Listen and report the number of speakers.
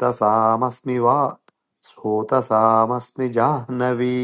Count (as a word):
one